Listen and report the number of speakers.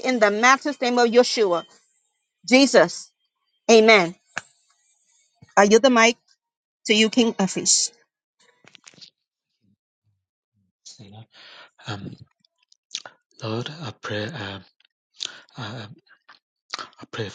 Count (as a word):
two